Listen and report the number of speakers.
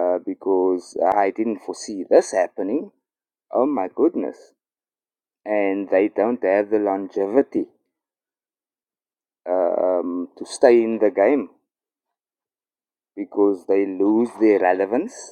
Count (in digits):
1